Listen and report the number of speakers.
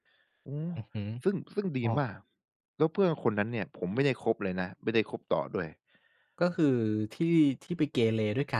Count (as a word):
two